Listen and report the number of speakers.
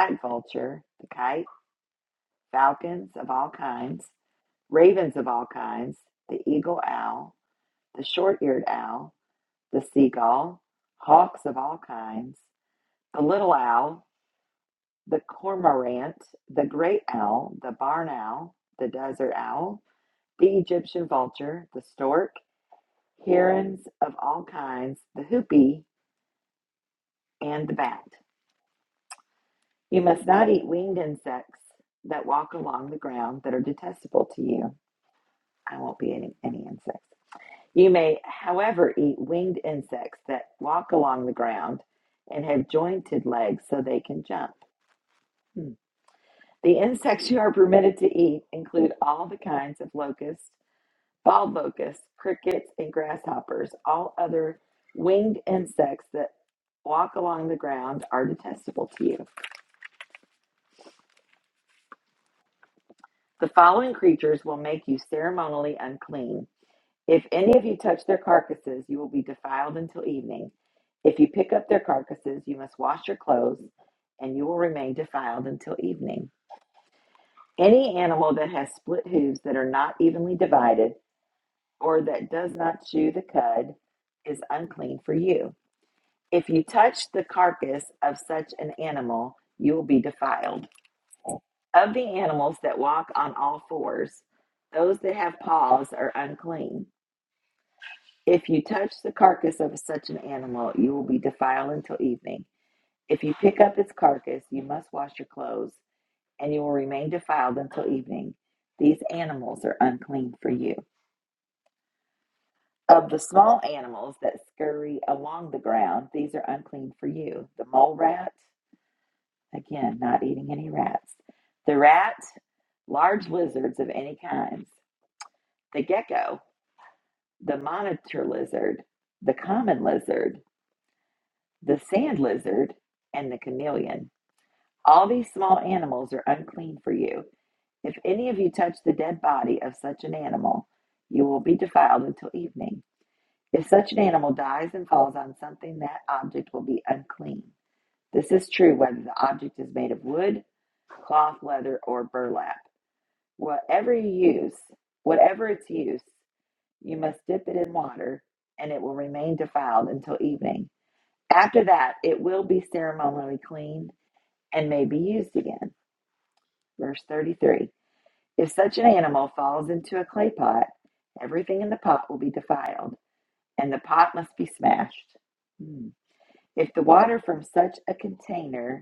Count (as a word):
one